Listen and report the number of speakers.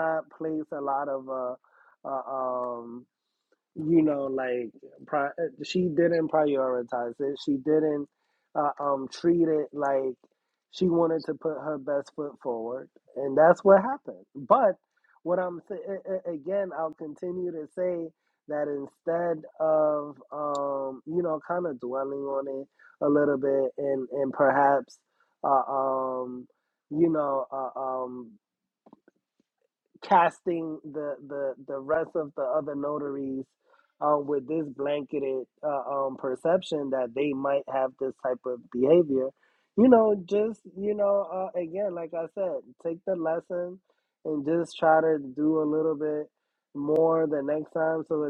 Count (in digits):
1